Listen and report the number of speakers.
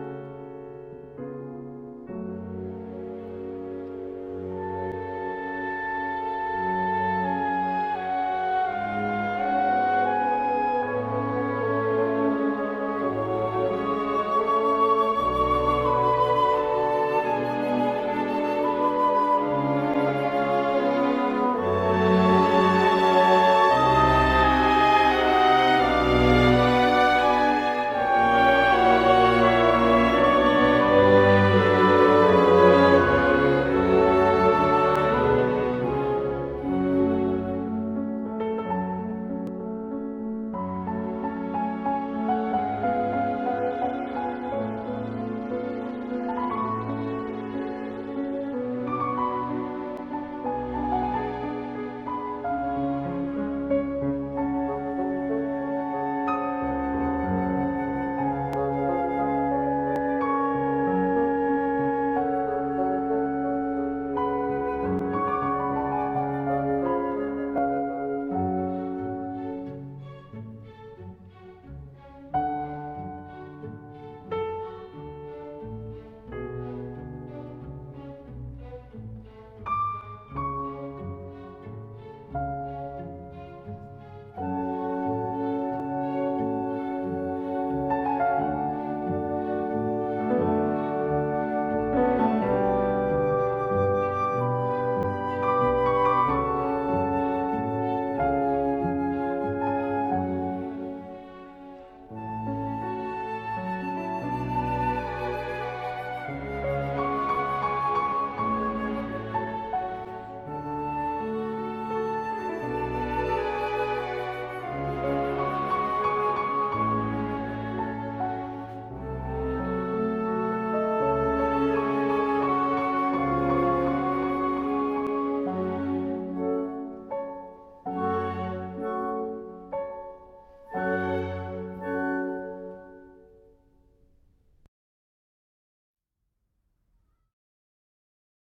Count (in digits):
0